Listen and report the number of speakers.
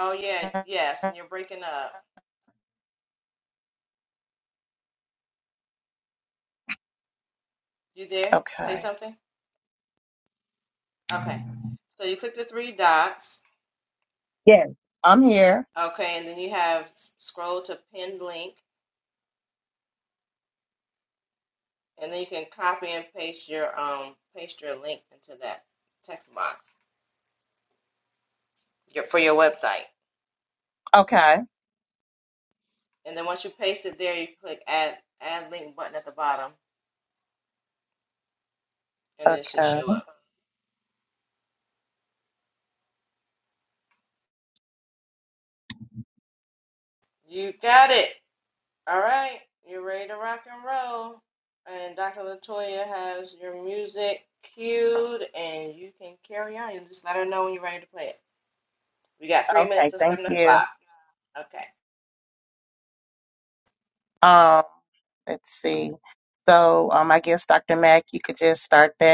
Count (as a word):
two